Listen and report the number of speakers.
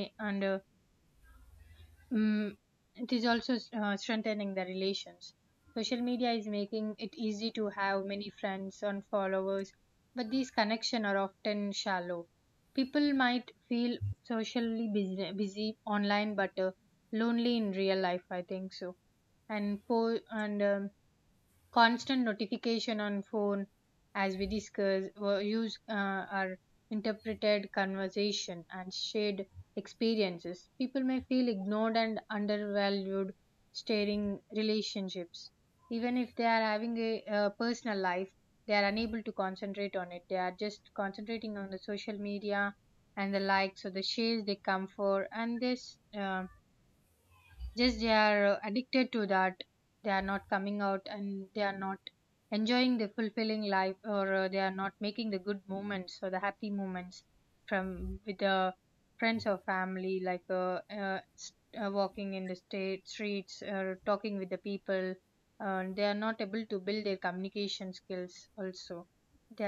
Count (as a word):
one